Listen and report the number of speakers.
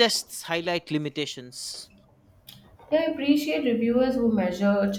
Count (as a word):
two